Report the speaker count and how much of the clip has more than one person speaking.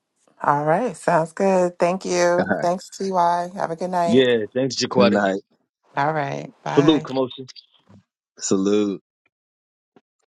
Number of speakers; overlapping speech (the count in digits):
3, about 8%